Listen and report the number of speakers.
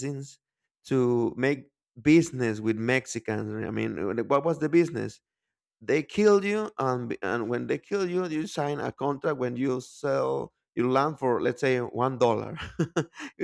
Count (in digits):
1